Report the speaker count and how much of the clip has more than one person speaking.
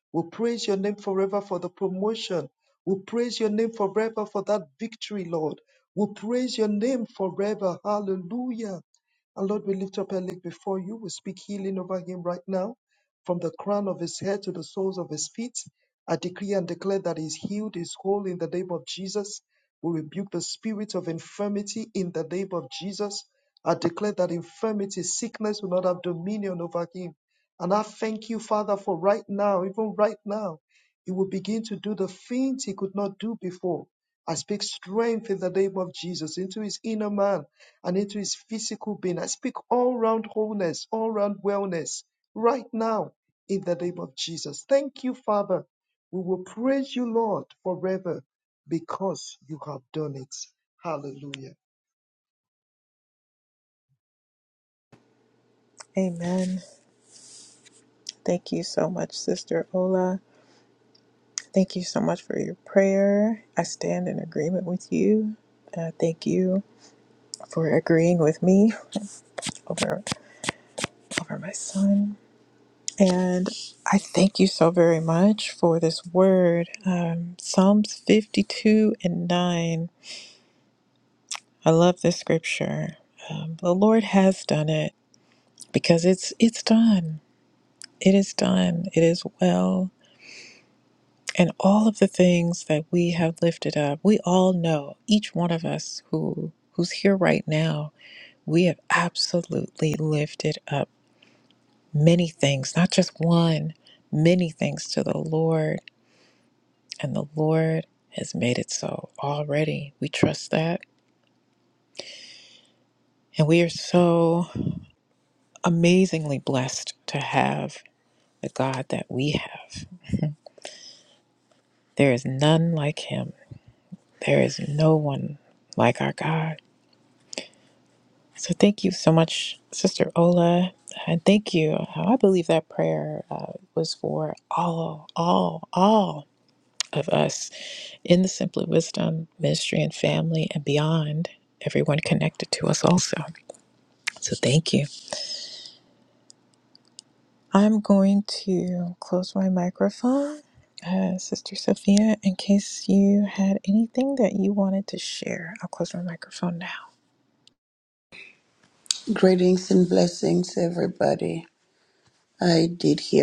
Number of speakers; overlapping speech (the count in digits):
3, no overlap